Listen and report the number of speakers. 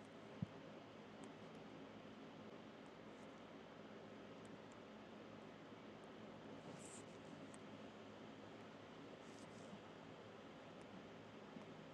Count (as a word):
zero